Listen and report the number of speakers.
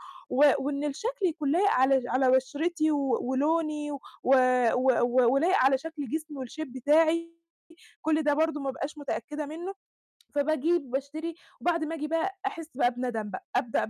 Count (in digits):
1